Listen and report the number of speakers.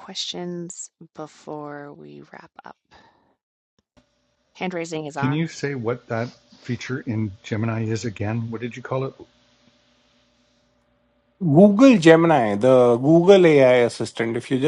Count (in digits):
3